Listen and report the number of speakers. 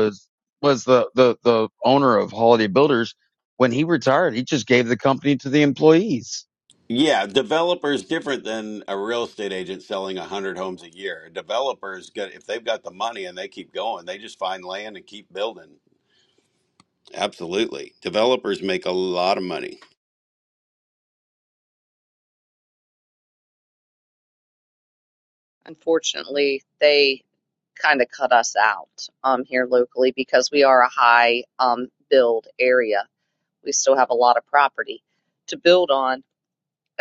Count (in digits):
3